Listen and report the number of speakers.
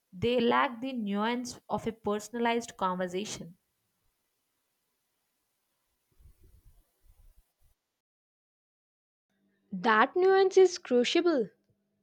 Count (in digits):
2